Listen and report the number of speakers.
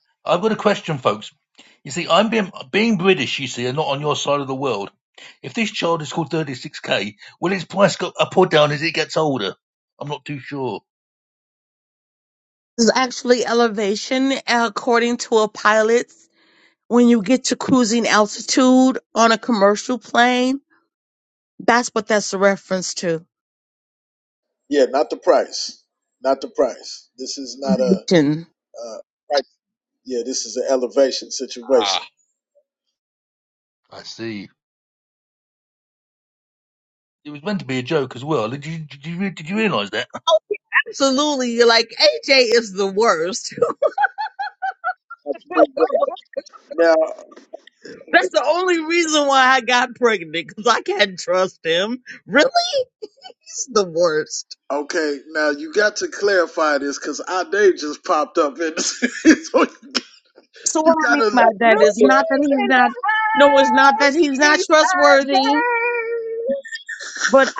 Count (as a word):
four